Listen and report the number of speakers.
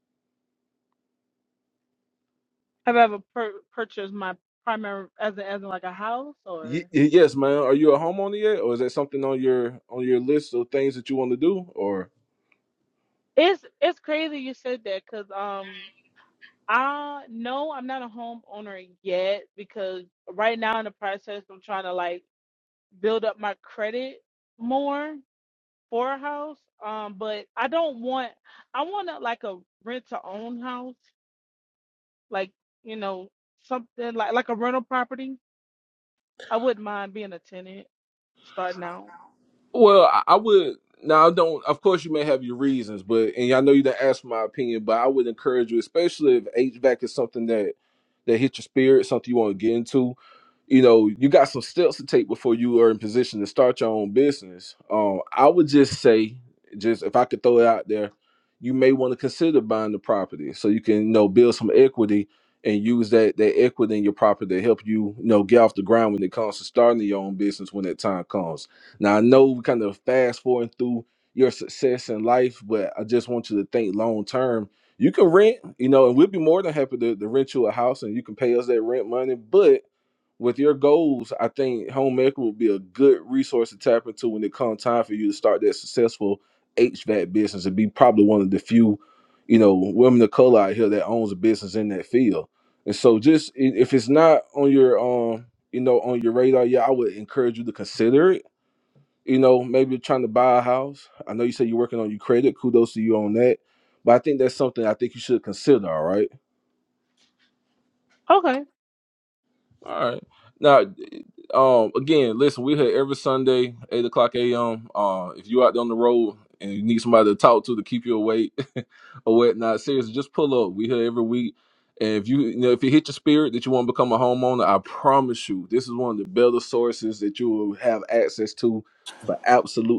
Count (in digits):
2